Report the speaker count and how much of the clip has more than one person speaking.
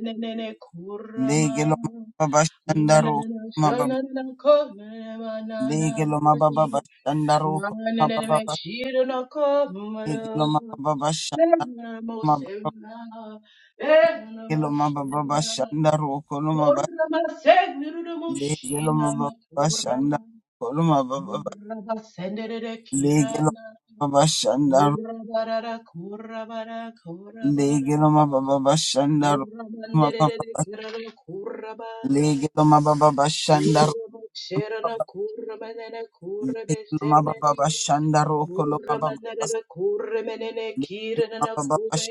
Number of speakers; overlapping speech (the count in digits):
2, about 30%